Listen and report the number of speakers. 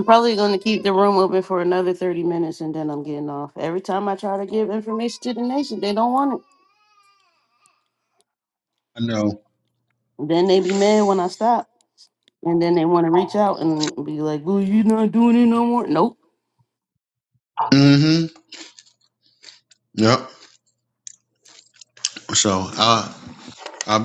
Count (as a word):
two